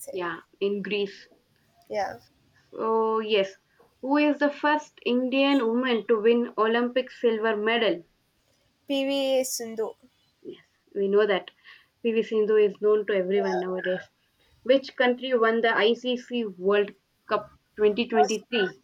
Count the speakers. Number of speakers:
two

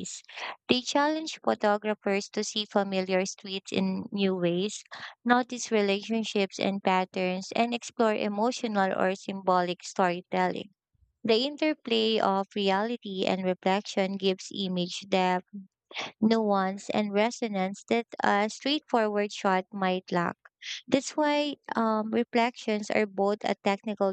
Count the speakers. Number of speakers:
one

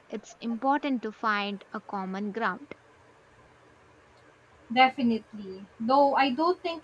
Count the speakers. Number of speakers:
two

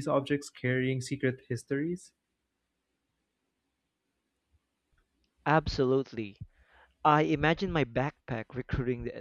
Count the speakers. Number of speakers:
two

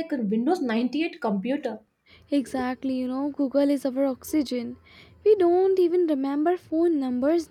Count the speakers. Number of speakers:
two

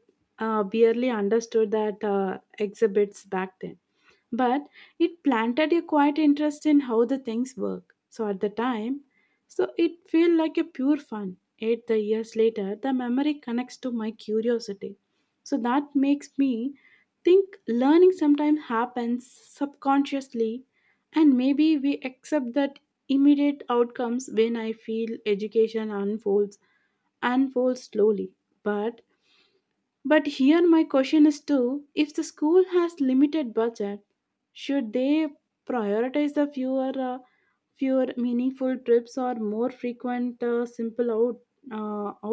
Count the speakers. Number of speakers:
one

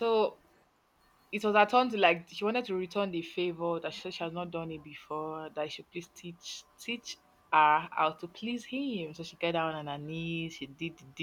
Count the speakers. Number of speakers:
one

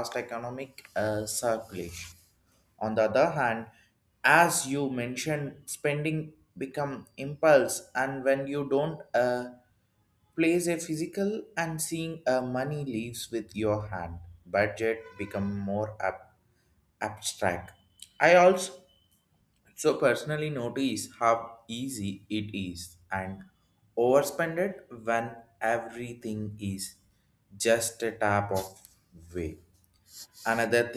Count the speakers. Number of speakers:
one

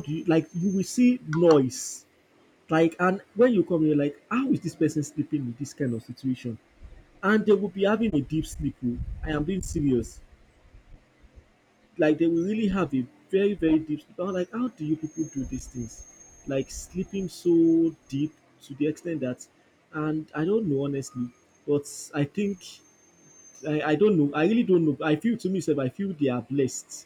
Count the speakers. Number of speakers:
one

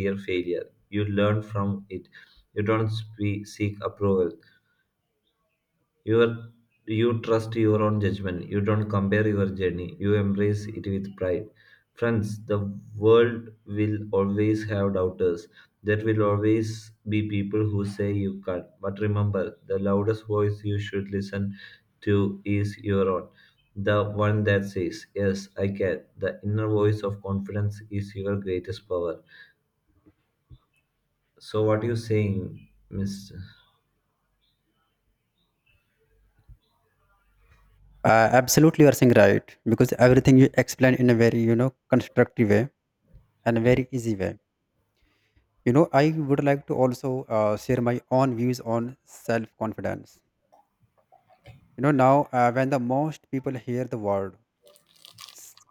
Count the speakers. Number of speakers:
two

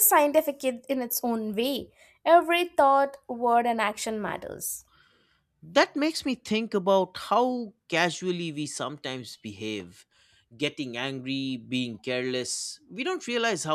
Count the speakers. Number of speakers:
two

